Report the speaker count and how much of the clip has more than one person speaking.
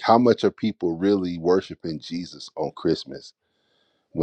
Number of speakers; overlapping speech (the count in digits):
1, no overlap